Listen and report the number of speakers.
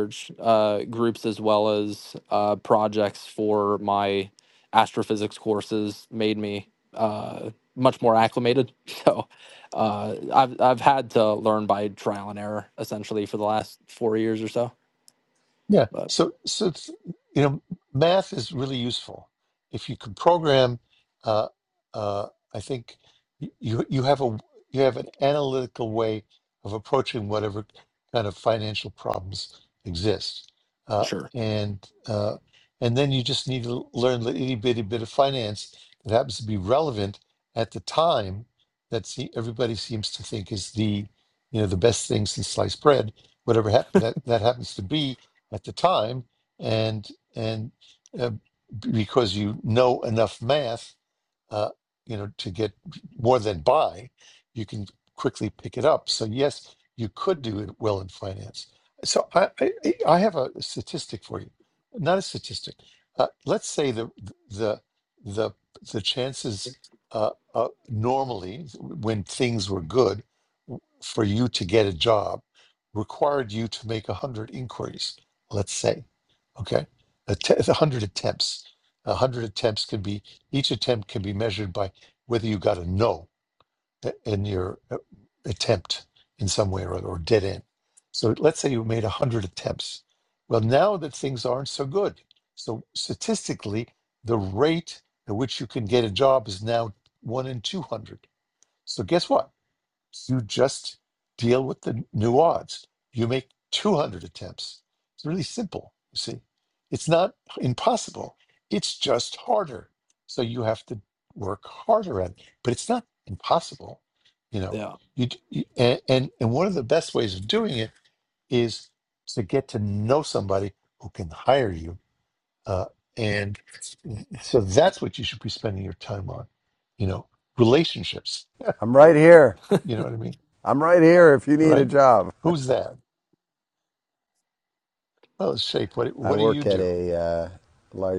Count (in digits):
3